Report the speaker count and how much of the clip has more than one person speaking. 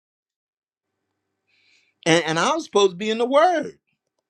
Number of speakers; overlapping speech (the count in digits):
1, no overlap